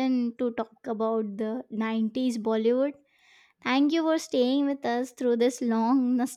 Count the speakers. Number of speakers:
1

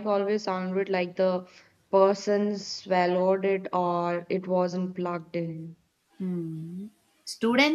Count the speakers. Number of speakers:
2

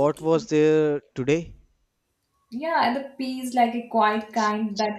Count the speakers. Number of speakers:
2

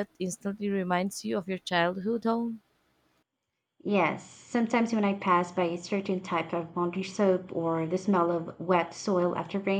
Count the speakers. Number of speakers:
2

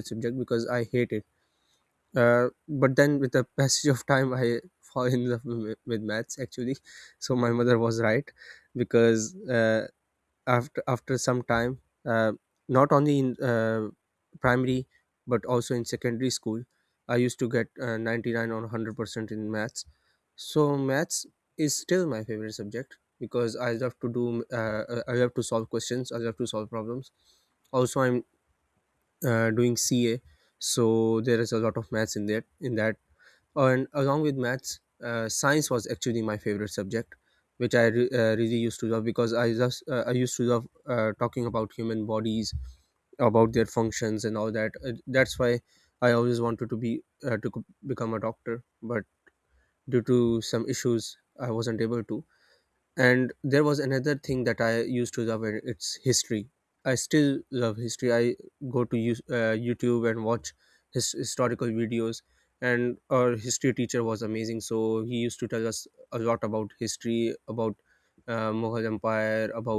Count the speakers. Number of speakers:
1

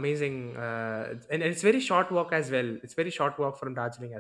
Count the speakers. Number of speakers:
1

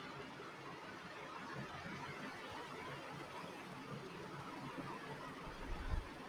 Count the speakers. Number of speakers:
0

